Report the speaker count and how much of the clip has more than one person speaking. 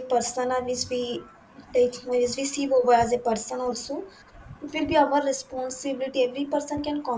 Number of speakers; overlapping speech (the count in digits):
1, no overlap